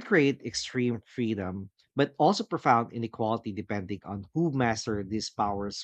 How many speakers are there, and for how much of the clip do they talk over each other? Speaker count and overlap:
one, no overlap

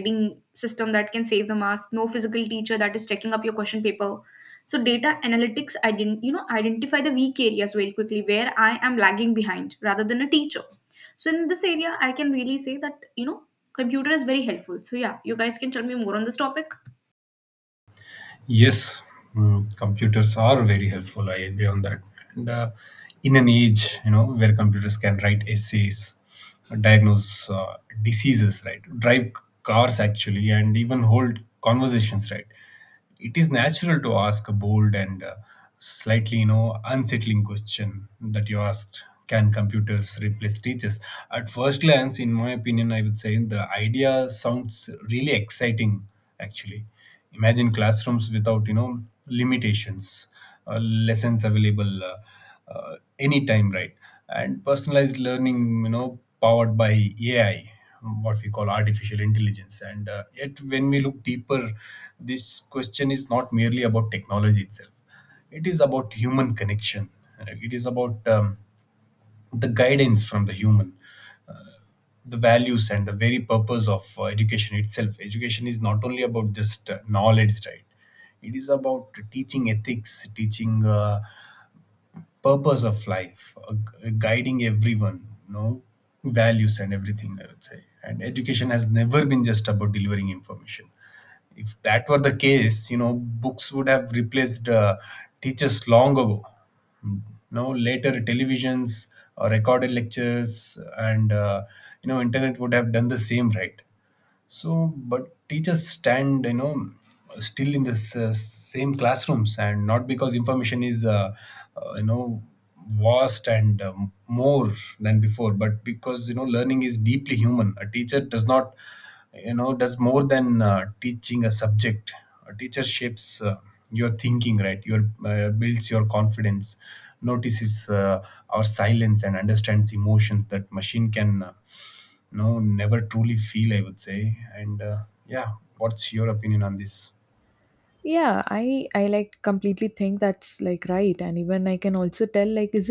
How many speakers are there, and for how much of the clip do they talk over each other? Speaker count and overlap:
three, no overlap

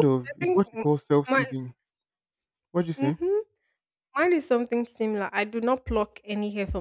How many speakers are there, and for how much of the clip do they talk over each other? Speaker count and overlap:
two, about 19%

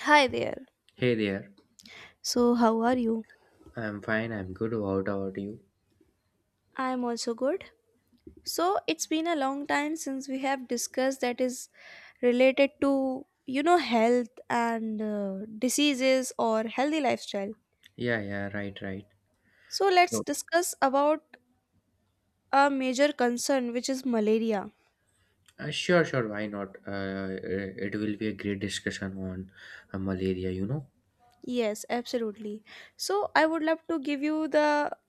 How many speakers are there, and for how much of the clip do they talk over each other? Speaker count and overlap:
two, about 1%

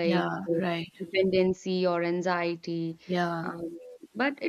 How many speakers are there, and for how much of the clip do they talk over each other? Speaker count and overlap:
two, about 14%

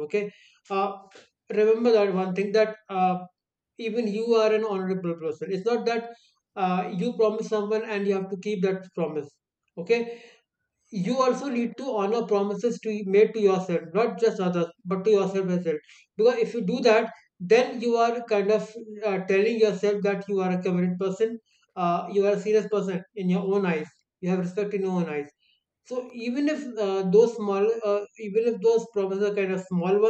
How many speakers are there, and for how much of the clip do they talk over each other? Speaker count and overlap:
one, no overlap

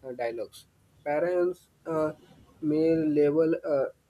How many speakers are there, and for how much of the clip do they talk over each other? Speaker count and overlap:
one, no overlap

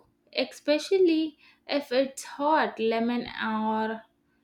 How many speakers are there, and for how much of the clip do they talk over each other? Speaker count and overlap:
one, no overlap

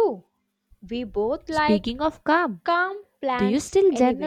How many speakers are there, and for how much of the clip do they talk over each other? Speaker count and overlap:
two, about 21%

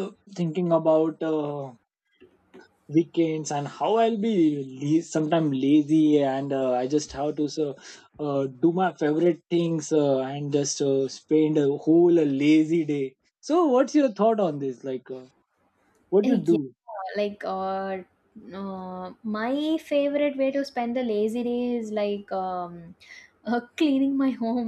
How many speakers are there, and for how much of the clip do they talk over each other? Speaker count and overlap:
two, about 1%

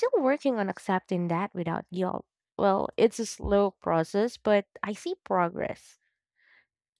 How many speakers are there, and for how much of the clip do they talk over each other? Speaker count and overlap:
one, no overlap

